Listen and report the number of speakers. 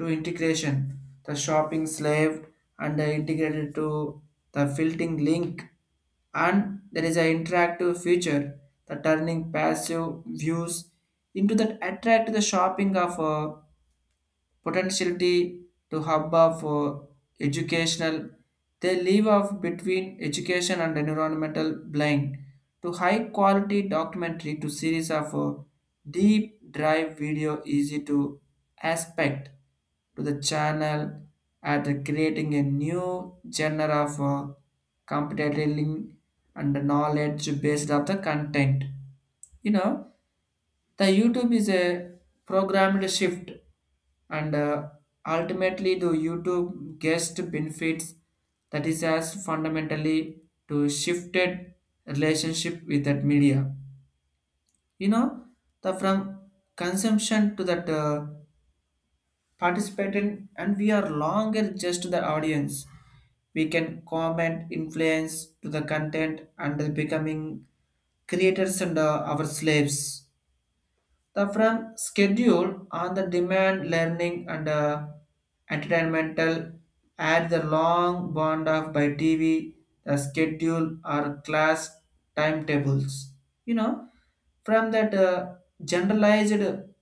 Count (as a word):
one